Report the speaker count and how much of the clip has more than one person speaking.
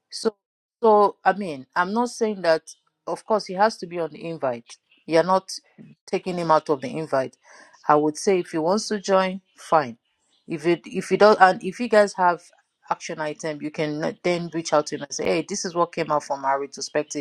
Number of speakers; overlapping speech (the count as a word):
one, no overlap